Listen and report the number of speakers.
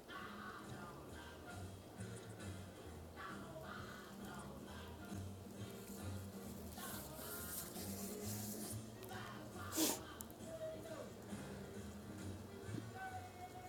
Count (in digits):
0